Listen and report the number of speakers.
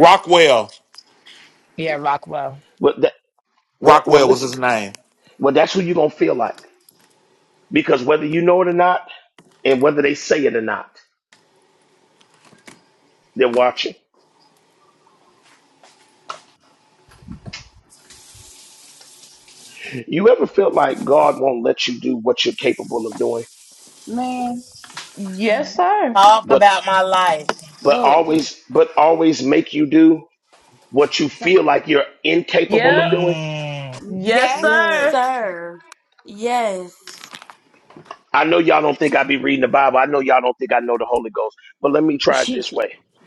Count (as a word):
seven